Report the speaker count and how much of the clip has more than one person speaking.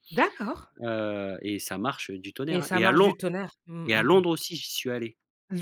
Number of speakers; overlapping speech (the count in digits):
2, about 18%